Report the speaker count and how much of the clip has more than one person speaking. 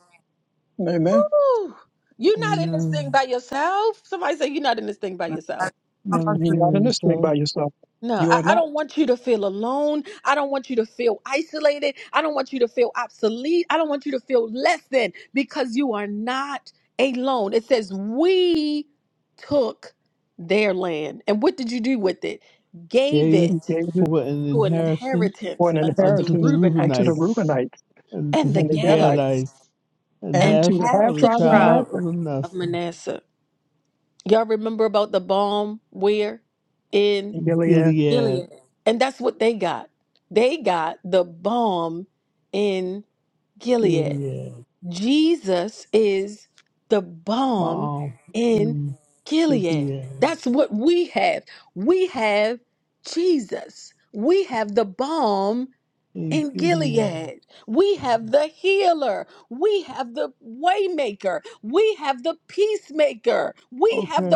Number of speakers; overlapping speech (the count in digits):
3, about 18%